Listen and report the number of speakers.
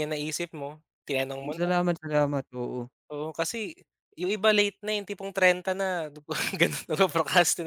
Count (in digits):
2